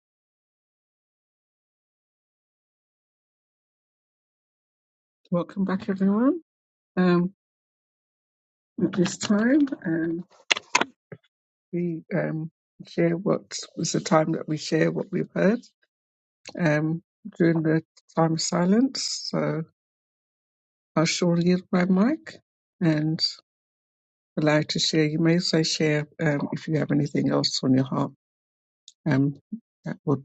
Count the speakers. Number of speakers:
1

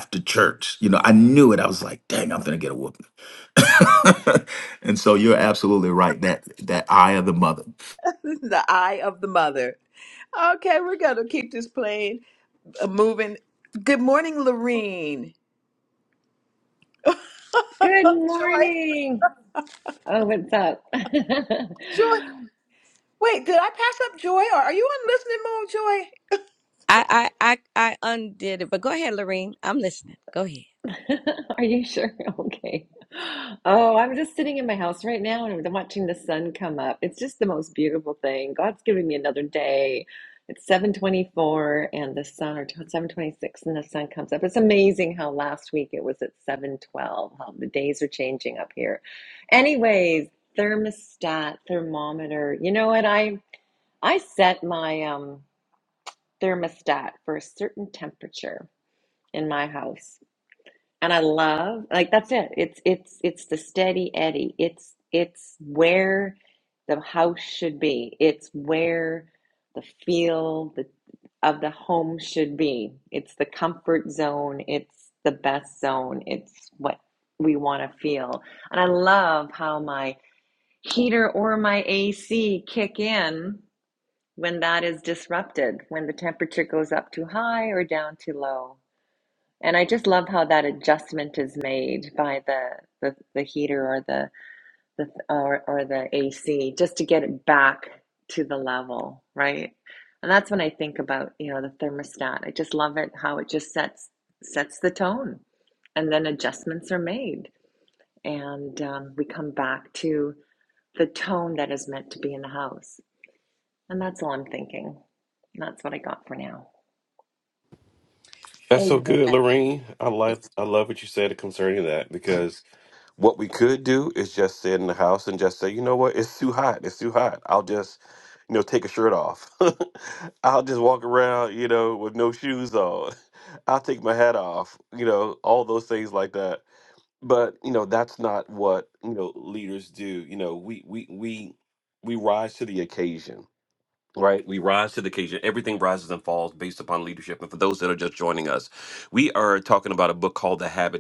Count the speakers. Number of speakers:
5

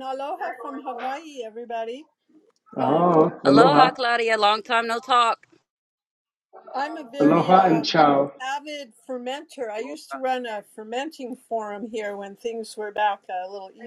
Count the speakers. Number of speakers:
3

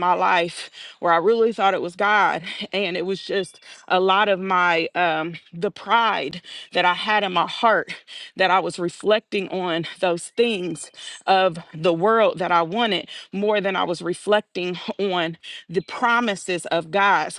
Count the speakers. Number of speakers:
1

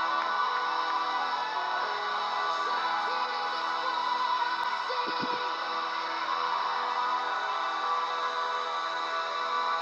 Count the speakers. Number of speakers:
0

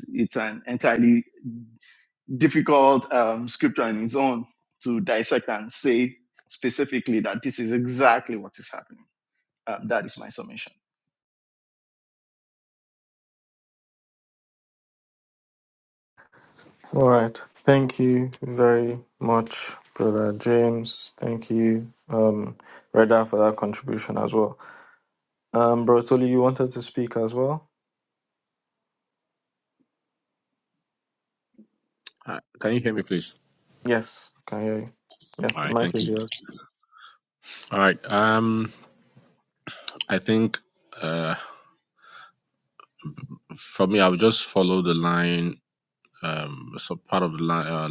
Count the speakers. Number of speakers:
3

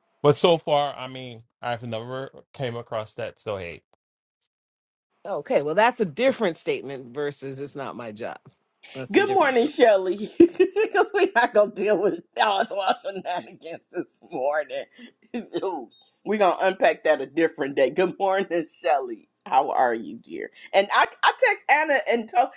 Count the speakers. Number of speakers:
3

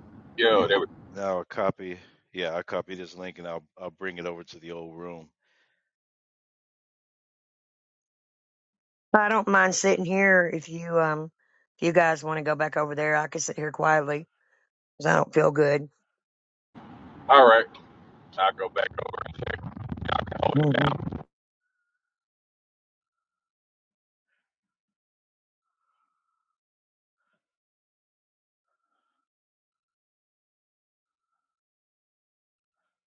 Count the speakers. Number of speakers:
3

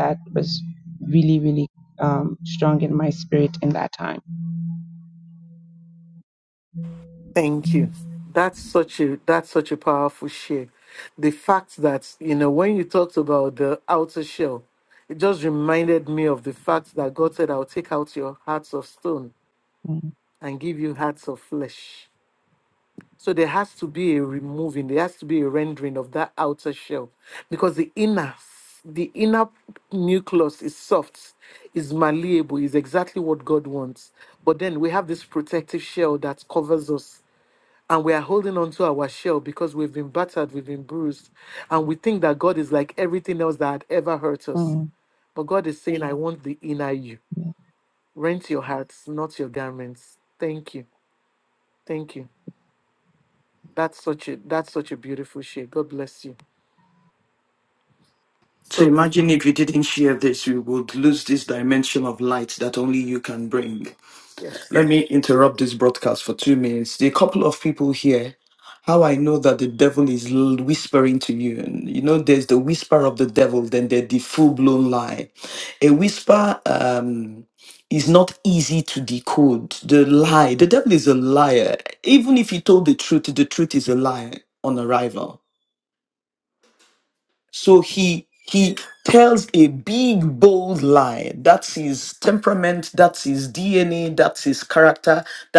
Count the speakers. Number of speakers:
3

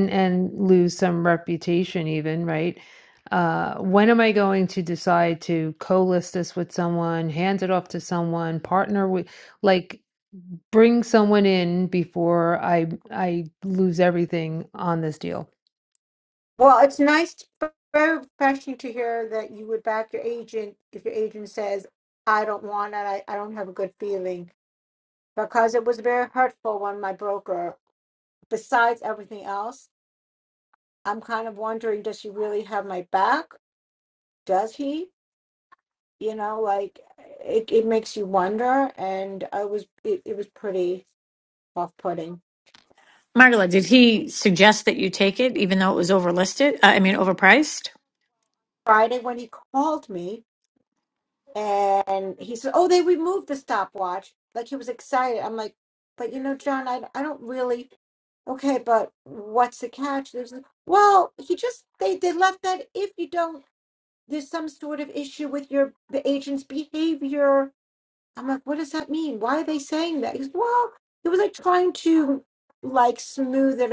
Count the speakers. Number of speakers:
3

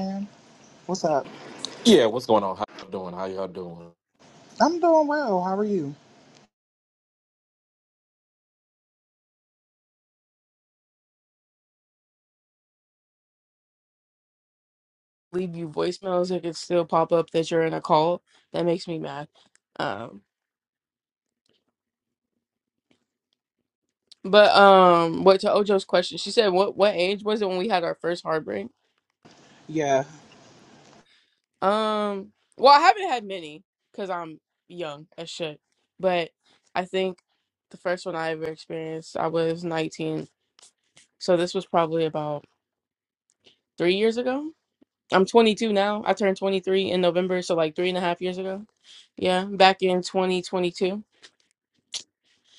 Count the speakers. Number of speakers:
3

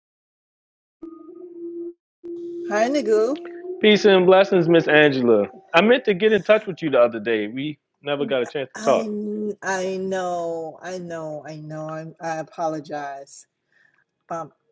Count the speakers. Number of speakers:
2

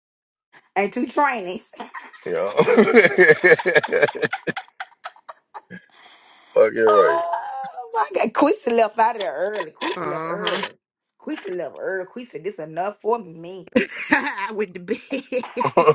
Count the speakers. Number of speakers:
3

